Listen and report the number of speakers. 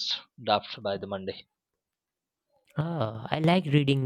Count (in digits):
2